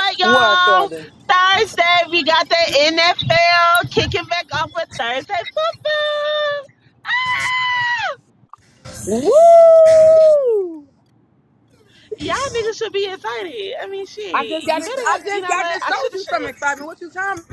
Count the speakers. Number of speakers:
two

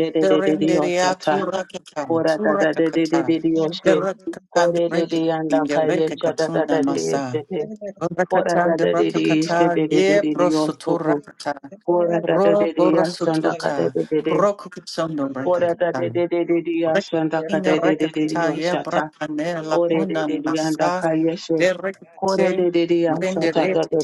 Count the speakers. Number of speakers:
two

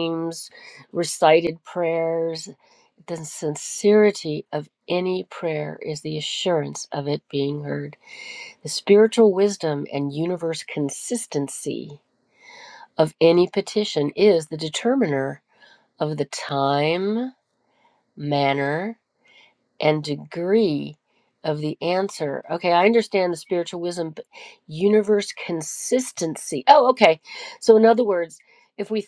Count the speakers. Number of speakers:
one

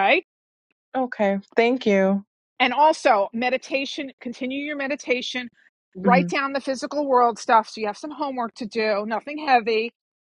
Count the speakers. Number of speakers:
two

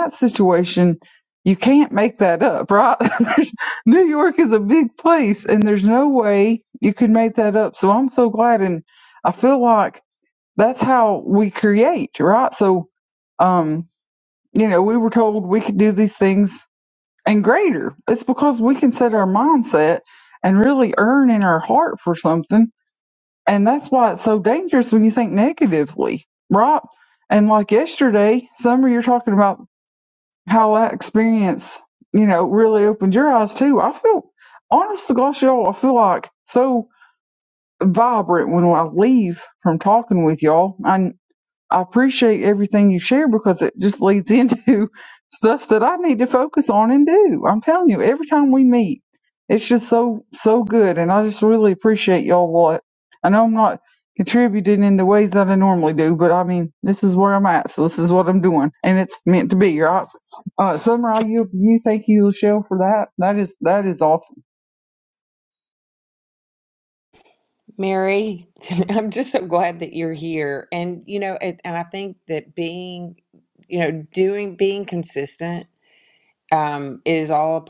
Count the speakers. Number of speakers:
two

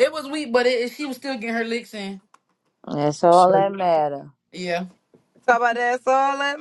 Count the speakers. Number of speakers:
three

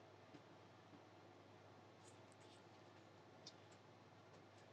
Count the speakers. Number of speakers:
zero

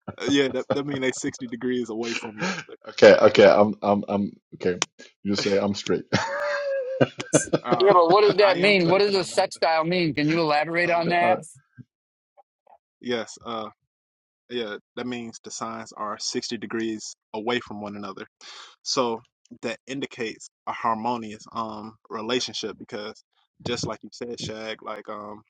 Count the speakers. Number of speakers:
three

